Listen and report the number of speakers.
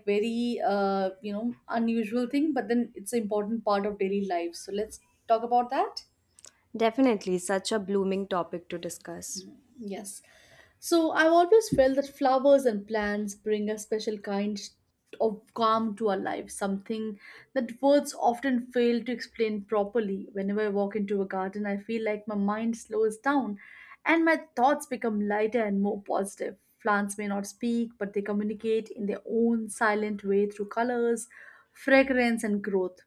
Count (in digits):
2